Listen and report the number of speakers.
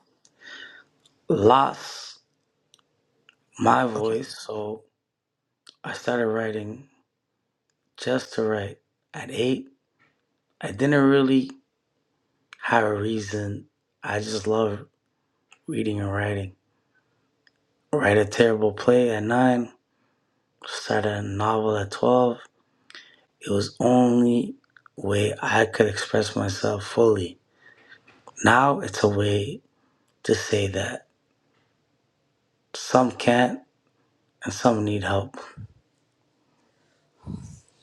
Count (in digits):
1